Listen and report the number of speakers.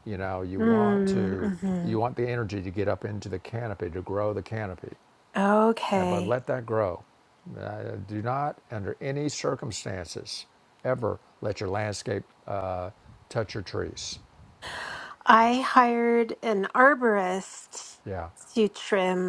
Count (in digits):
2